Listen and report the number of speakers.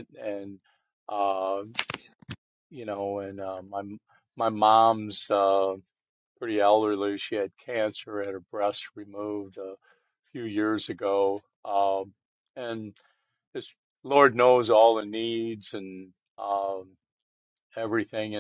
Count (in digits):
1